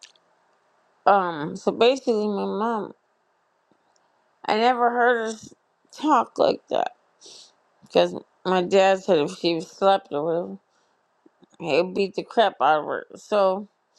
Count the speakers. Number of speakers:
1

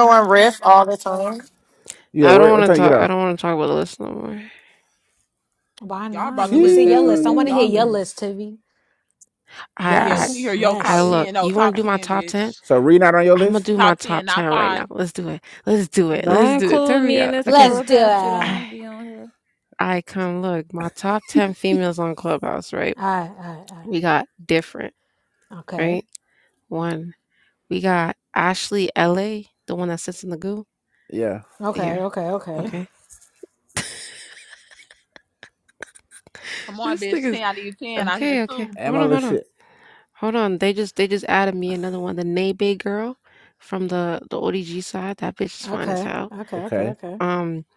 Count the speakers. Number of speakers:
6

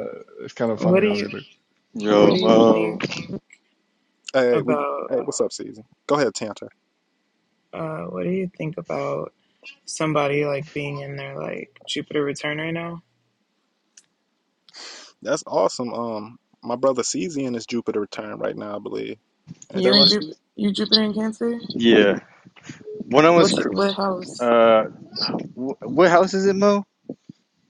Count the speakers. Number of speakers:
4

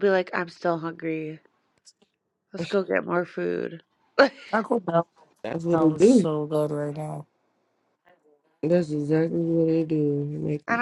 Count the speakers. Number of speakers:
3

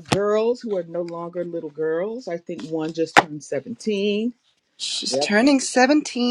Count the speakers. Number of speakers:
2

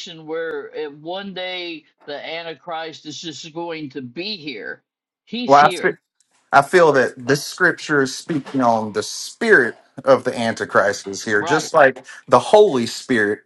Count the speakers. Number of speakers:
2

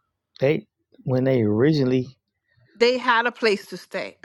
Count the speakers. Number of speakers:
2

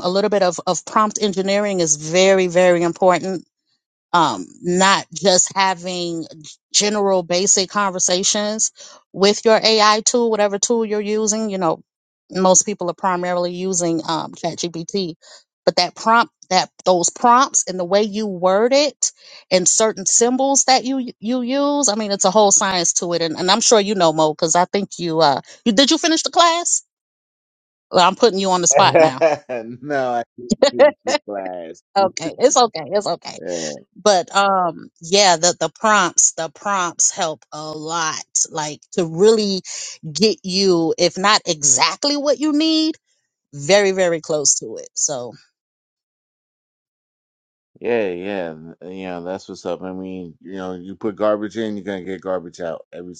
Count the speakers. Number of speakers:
2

